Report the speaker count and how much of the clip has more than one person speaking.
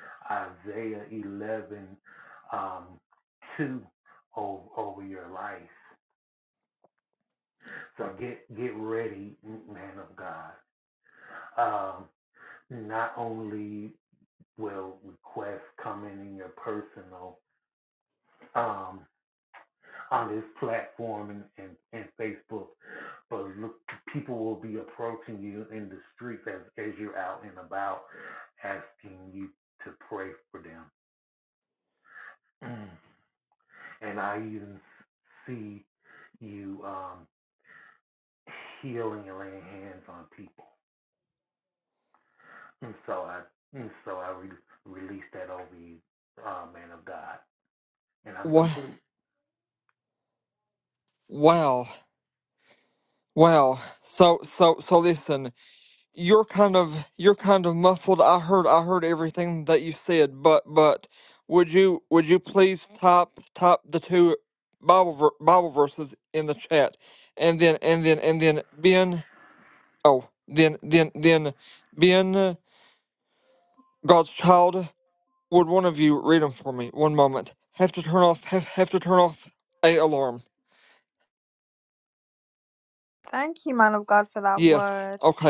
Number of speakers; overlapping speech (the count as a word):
three, about 1%